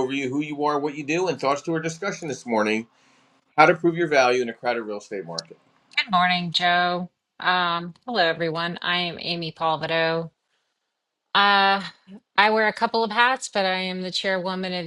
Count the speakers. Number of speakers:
2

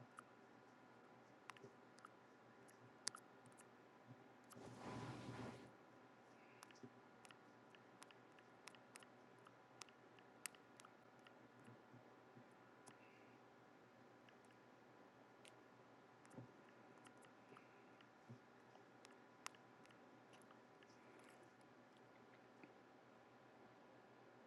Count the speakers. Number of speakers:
0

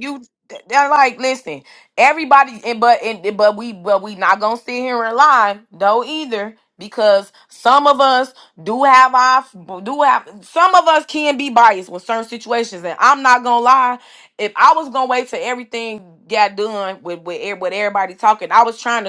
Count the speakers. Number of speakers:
1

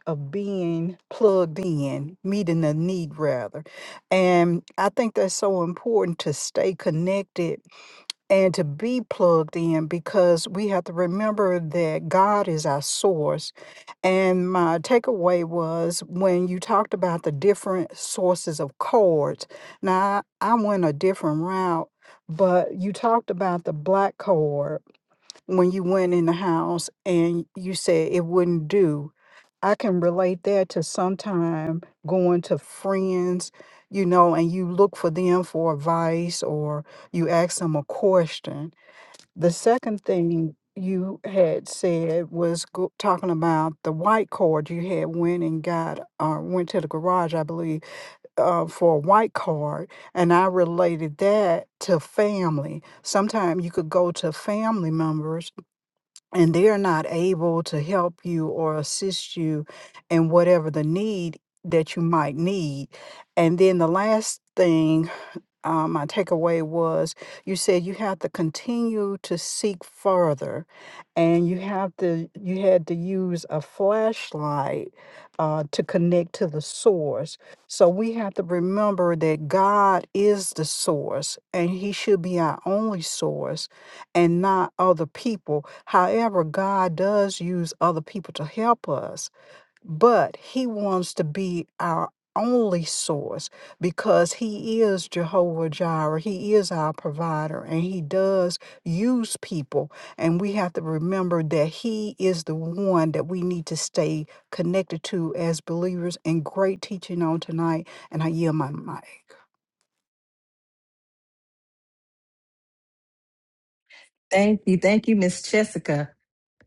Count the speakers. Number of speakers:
2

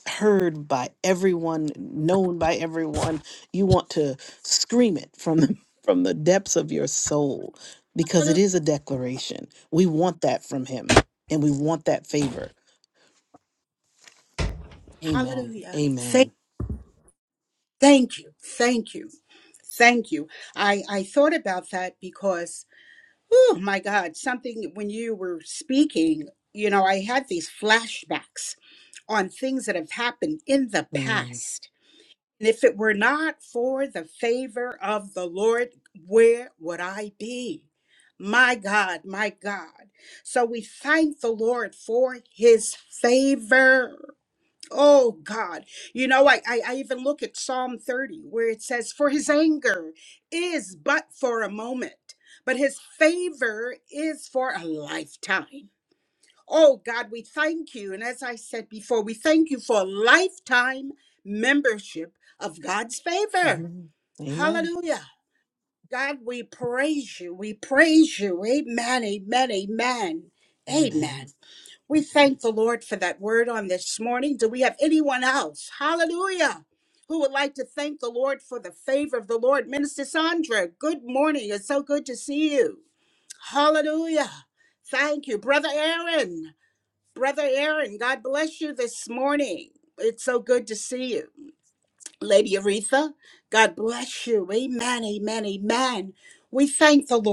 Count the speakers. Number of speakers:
2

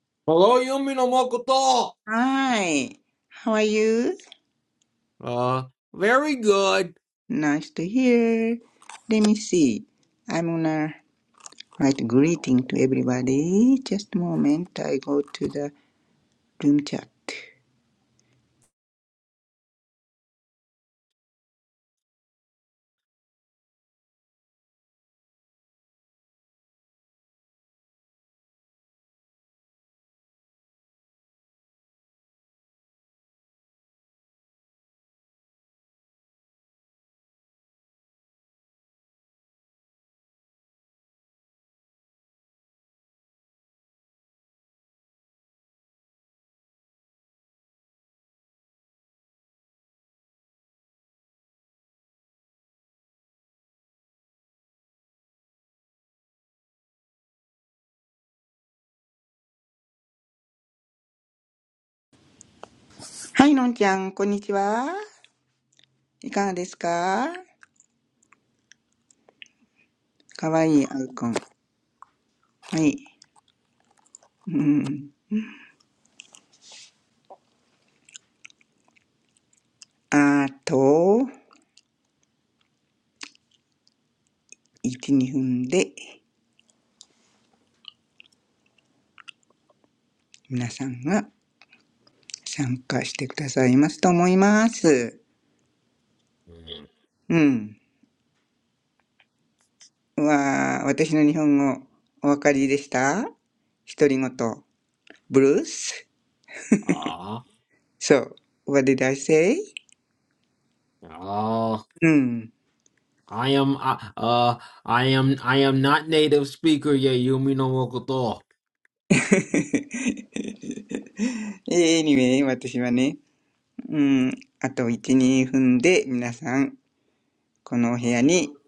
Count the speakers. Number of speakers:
2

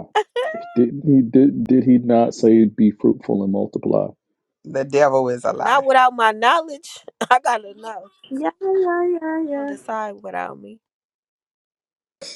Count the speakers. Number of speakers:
4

